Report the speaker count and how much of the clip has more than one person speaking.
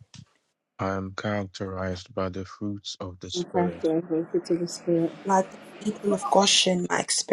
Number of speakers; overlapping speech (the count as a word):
three, about 8%